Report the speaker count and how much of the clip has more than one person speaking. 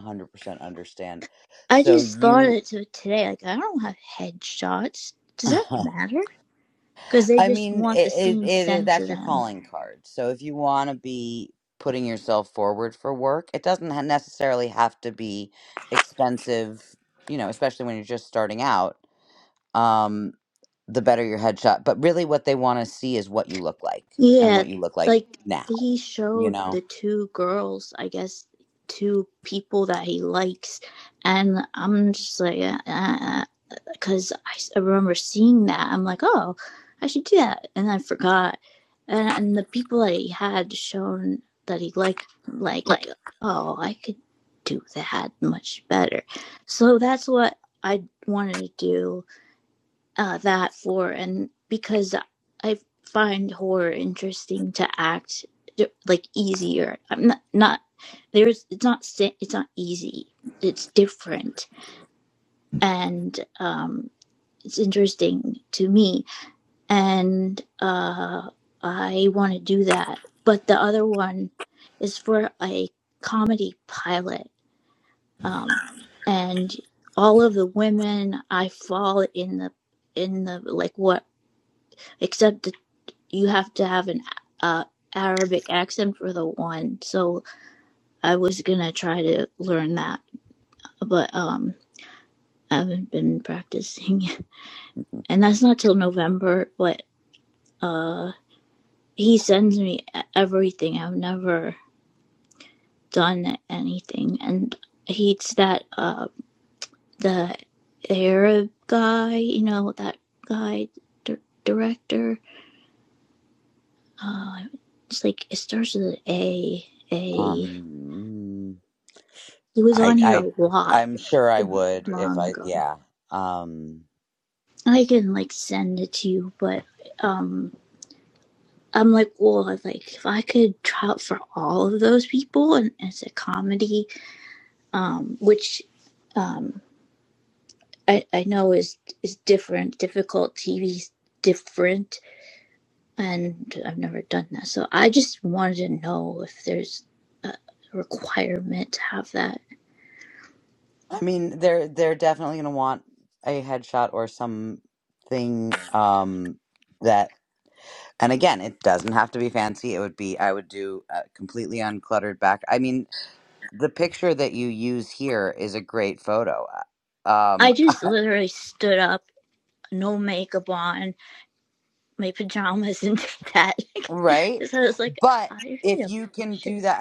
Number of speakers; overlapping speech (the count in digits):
2, about 4%